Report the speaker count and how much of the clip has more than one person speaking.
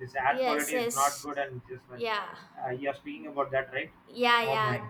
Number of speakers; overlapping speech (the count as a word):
two, about 22%